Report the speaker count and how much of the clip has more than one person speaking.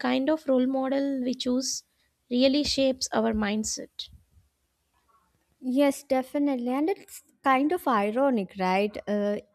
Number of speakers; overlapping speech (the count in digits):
2, no overlap